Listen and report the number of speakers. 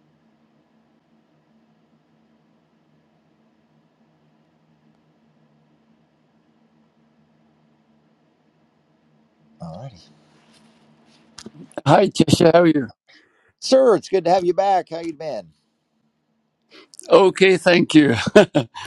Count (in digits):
2